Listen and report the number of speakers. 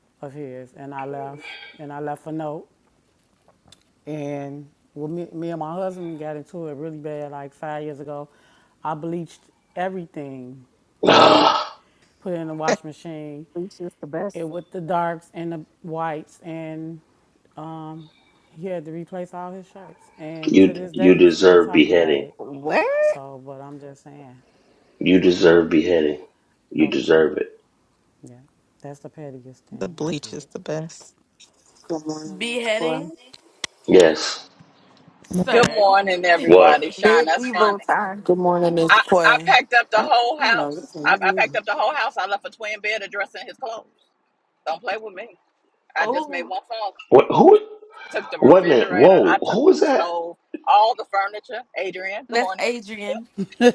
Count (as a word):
six